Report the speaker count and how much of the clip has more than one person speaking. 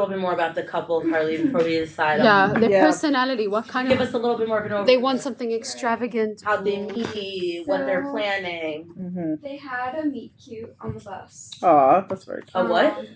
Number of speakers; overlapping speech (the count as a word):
four, about 37%